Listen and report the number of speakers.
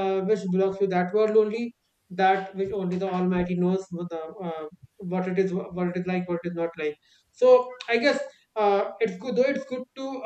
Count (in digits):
1